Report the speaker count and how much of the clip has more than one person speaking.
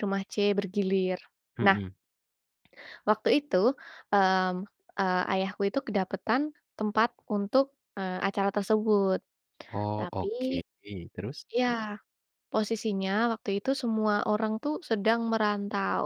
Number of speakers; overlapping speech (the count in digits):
2, about 3%